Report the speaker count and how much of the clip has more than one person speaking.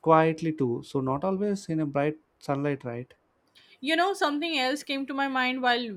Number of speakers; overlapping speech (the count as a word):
two, no overlap